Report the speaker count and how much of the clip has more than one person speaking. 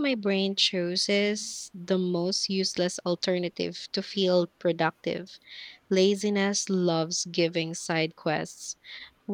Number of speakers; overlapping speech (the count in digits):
1, no overlap